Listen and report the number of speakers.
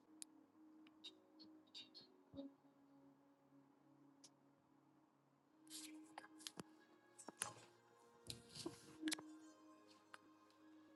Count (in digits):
0